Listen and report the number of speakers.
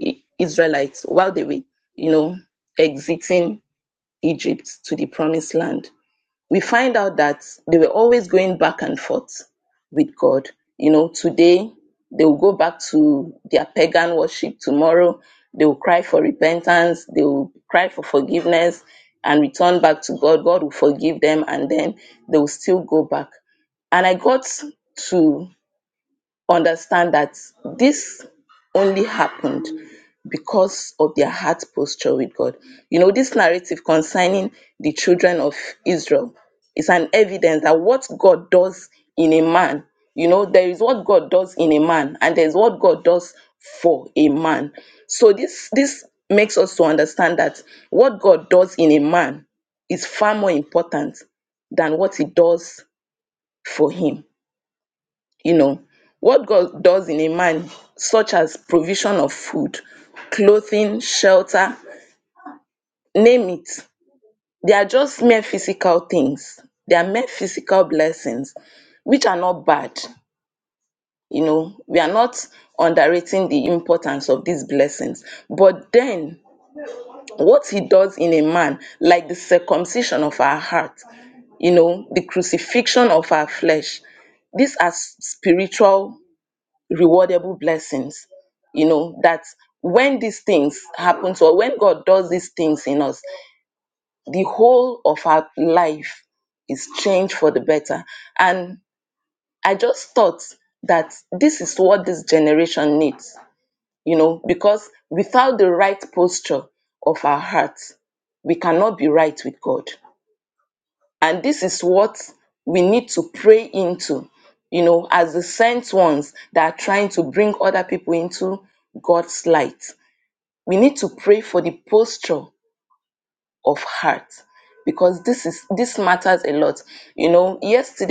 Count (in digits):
1